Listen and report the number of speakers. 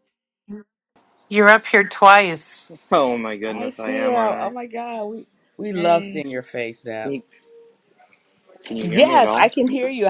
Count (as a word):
three